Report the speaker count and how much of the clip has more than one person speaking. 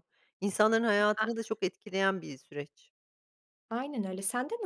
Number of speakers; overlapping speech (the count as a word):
two, about 3%